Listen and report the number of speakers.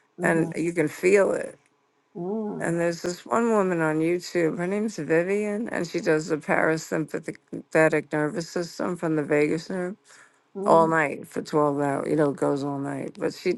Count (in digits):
2